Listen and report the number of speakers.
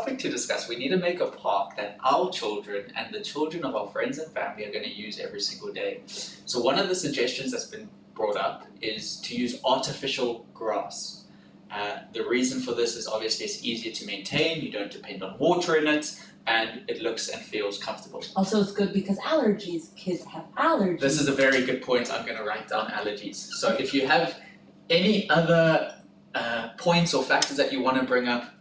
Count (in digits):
2